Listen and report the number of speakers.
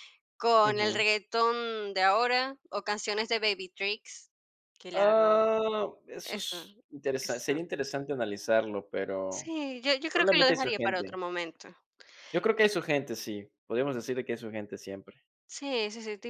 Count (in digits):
2